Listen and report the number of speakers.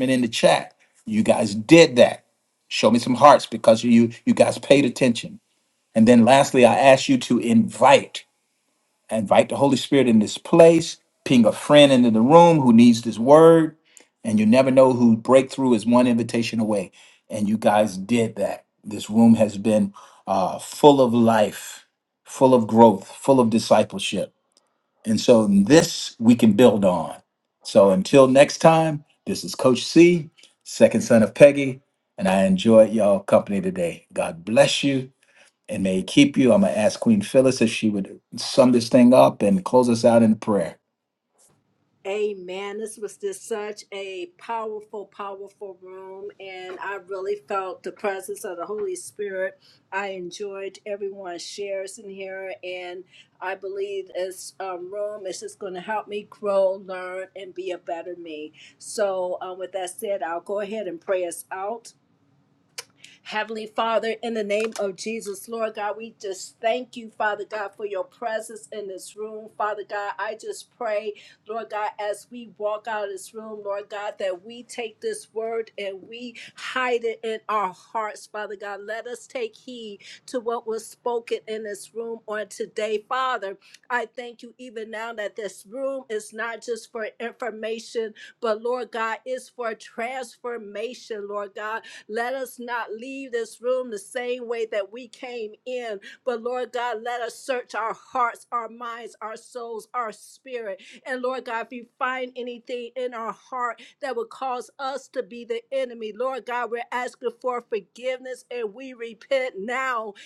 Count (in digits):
2